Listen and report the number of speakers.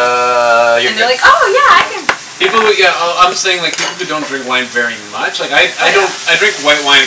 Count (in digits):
3